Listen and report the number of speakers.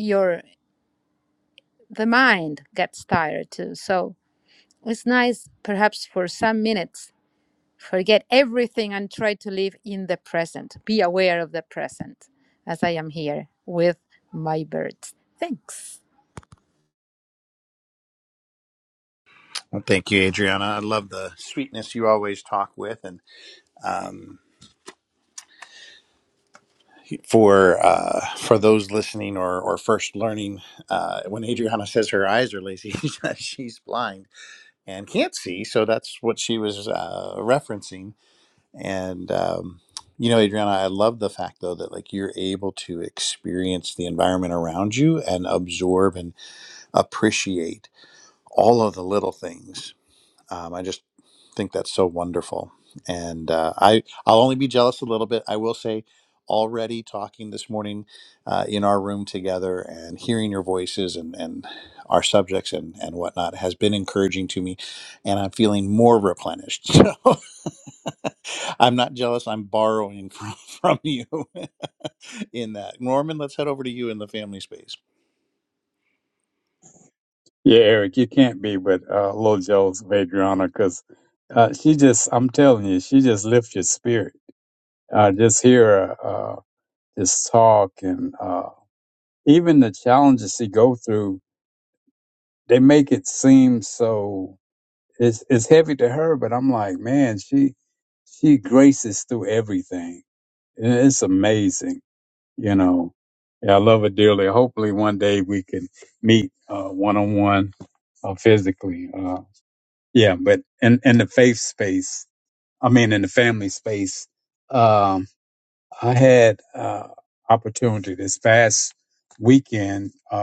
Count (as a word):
three